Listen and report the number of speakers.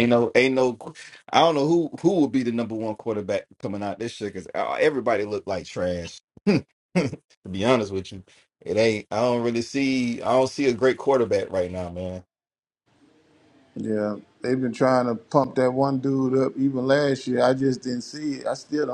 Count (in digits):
2